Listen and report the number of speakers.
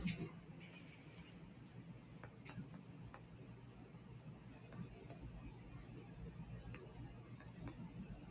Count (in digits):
0